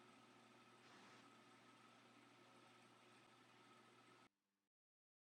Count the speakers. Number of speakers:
zero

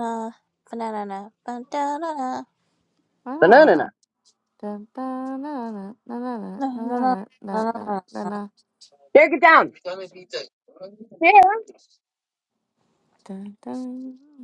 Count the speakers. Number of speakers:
three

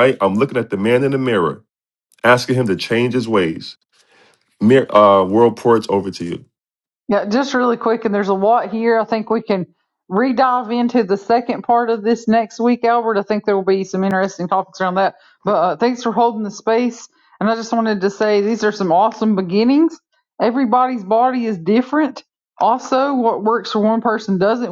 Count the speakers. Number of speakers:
two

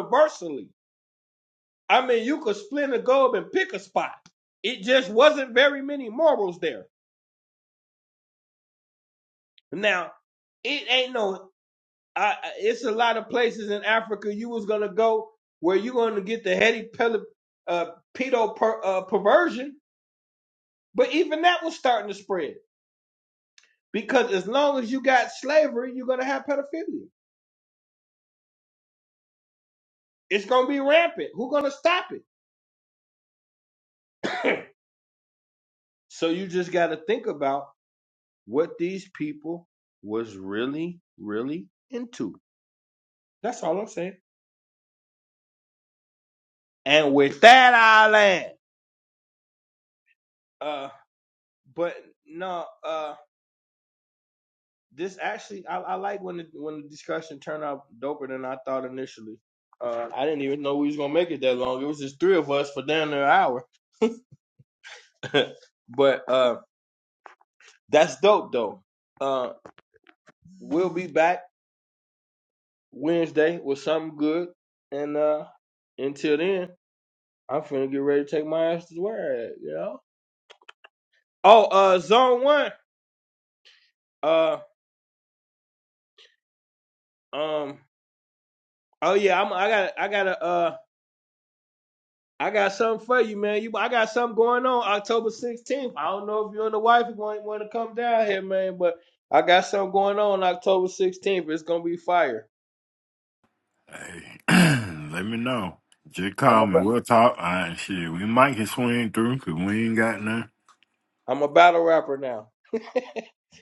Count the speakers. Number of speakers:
two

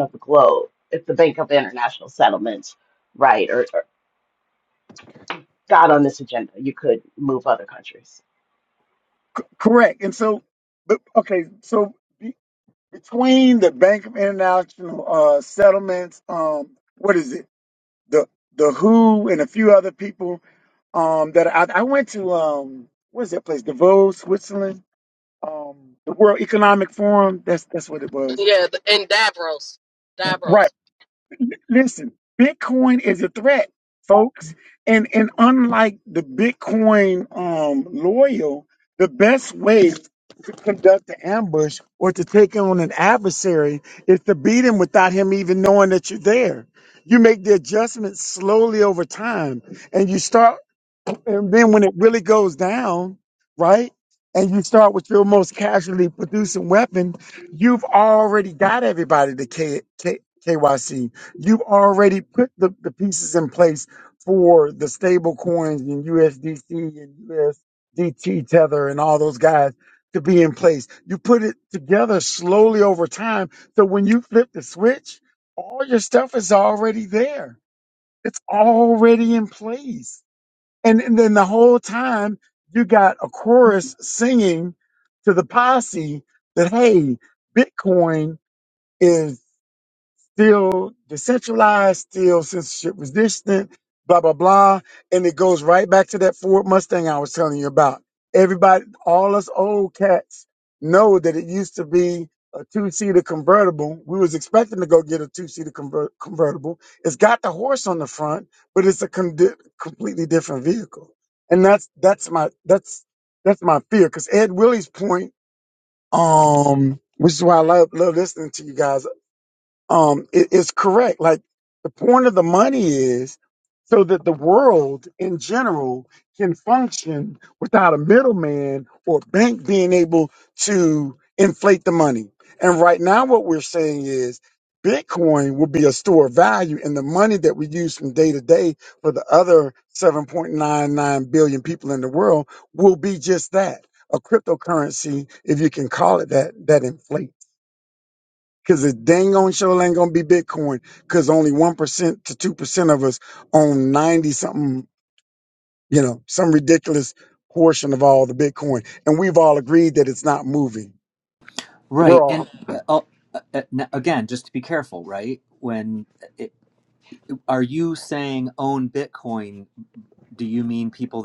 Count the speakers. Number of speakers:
four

